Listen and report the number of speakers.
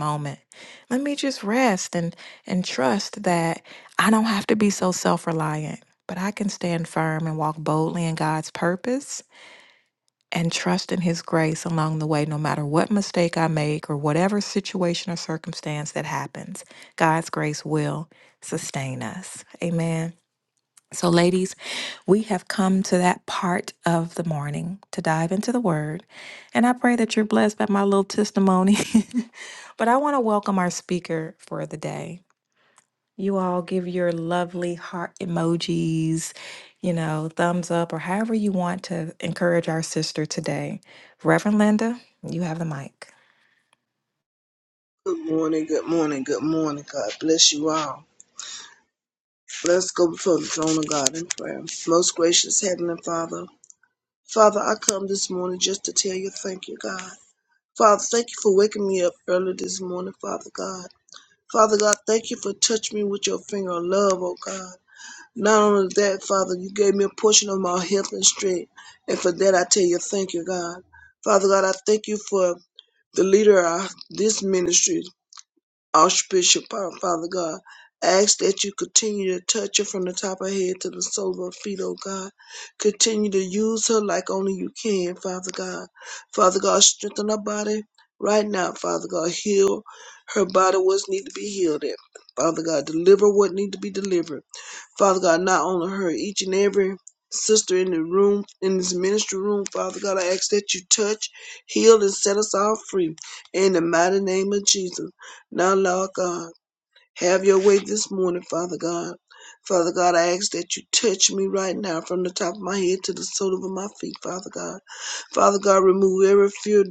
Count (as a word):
two